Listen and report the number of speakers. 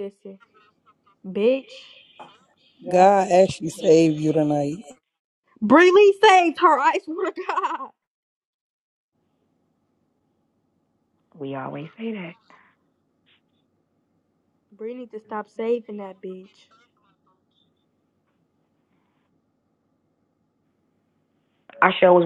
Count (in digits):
3